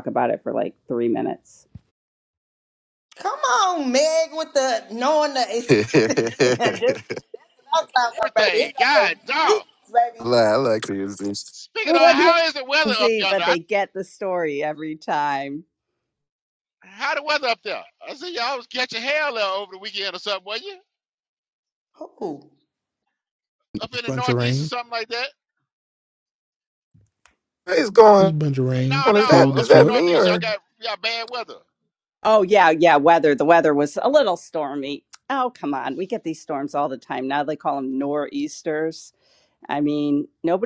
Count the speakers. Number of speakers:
5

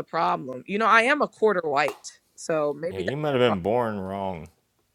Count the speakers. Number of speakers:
2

